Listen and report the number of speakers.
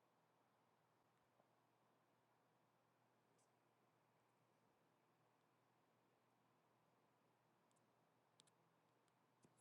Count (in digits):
0